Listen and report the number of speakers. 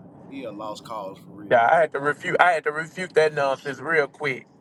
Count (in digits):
2